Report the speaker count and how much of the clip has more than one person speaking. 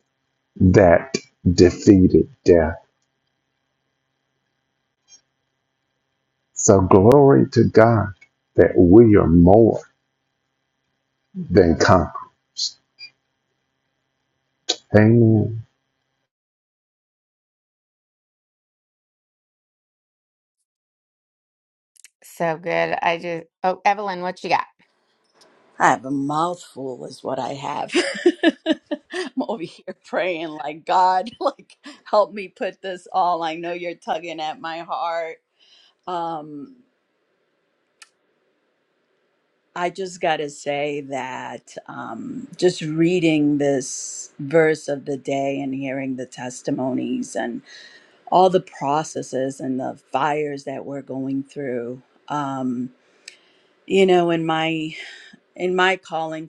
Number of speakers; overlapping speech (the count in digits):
3, no overlap